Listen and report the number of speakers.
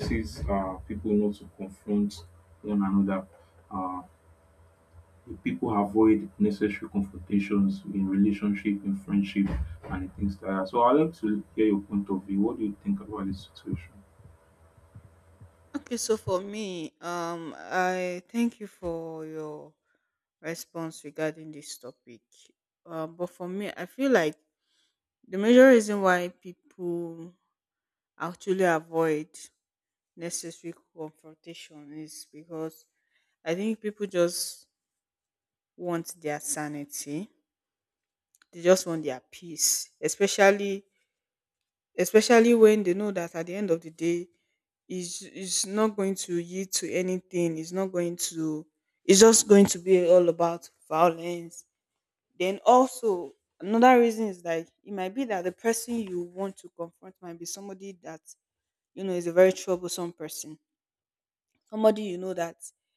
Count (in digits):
2